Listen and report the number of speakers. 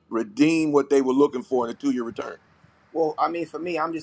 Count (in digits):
2